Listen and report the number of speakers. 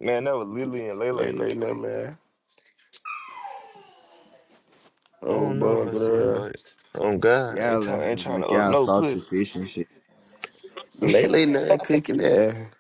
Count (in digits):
3